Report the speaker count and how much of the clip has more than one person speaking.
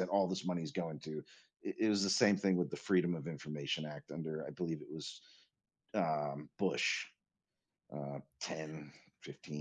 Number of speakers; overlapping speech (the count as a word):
one, no overlap